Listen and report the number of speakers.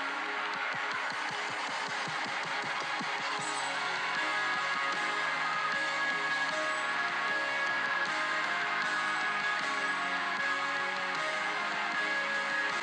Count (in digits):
0